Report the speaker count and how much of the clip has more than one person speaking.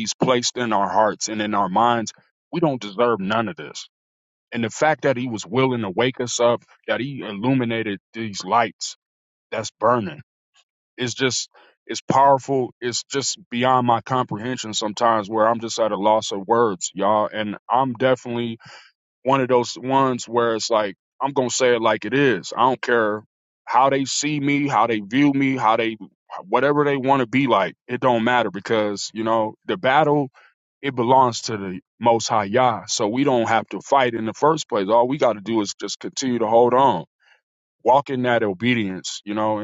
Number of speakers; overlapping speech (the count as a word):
one, no overlap